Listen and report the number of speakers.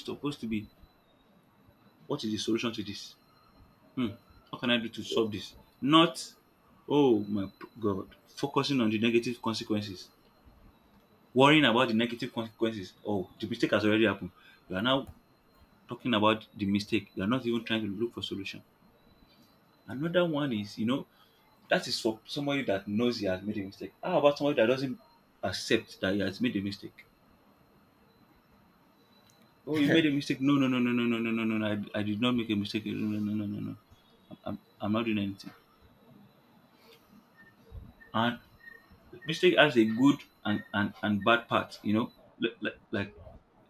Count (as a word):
one